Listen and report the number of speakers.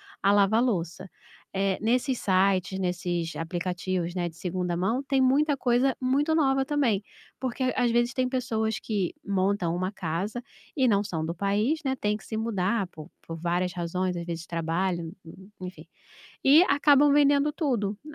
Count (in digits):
1